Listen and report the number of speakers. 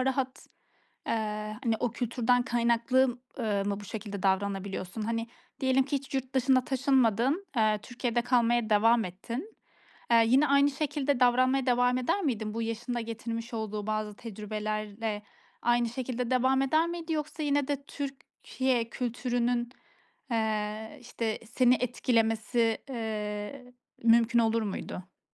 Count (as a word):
one